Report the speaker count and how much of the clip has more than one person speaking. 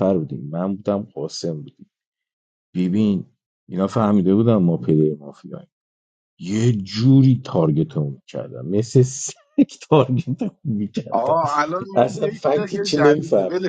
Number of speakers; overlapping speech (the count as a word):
two, about 15%